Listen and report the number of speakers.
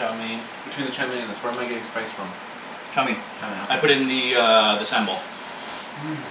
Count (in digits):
2